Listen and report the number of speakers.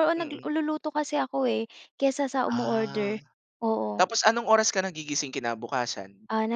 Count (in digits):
2